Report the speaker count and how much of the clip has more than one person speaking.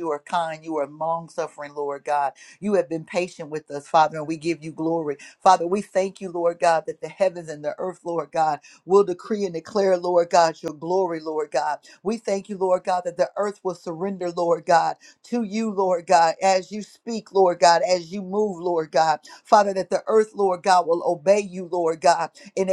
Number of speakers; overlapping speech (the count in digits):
1, no overlap